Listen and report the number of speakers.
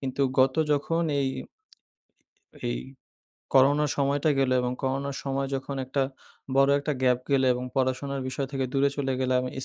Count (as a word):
one